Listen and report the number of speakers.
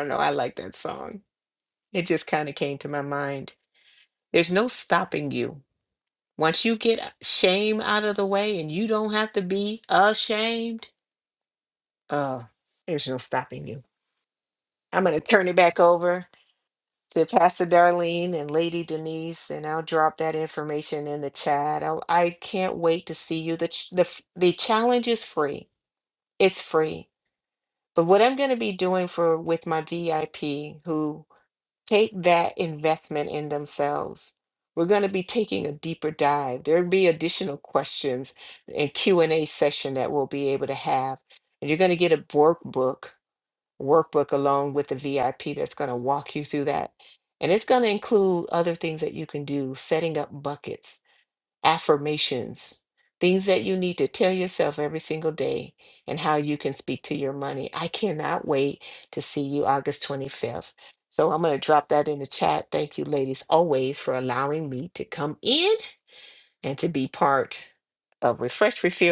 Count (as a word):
one